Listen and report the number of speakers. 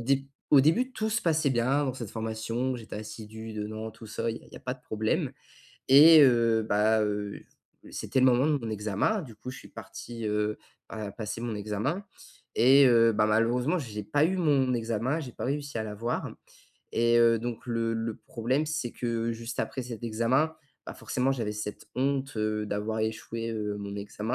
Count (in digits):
1